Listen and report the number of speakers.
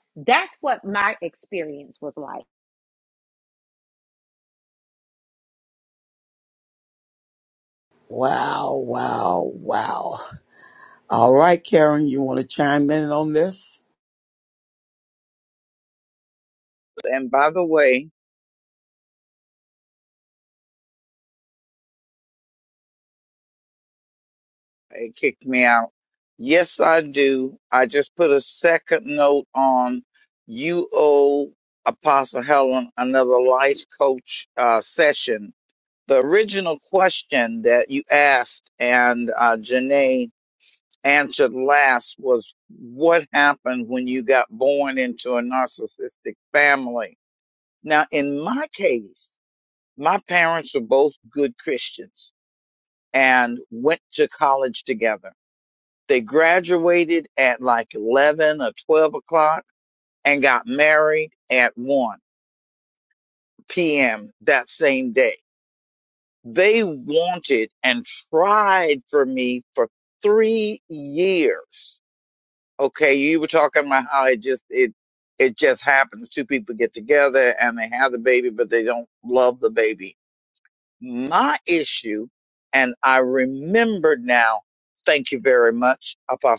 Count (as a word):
three